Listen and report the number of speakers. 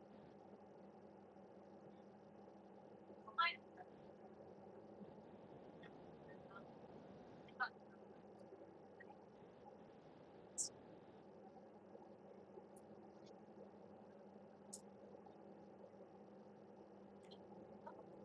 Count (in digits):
0